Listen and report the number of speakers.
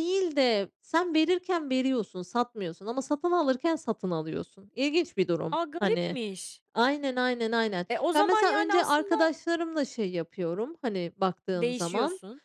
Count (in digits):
2